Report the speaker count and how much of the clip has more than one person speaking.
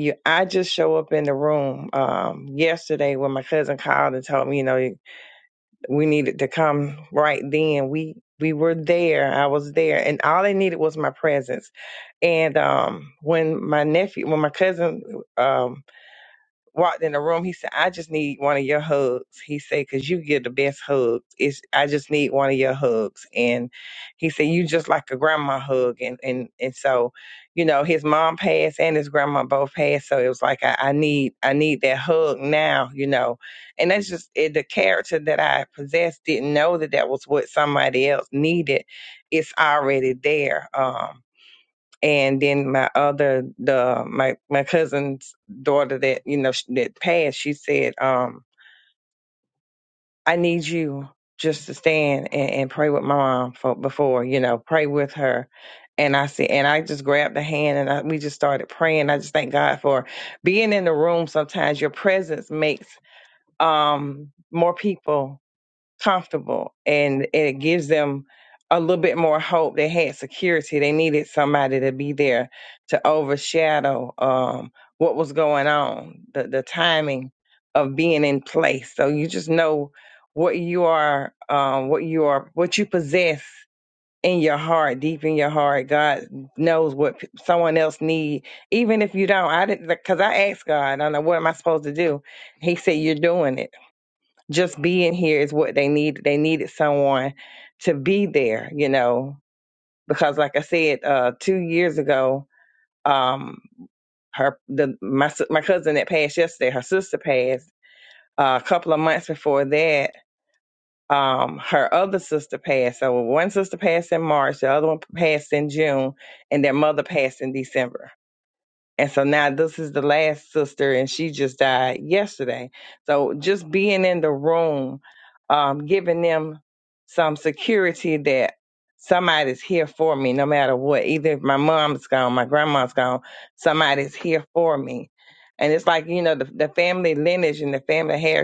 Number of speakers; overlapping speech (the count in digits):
1, no overlap